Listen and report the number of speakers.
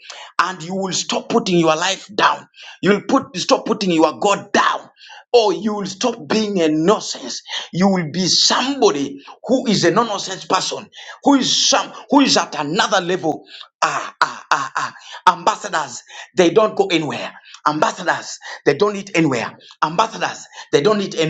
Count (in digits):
1